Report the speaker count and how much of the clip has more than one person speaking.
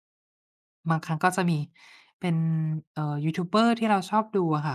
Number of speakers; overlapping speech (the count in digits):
1, no overlap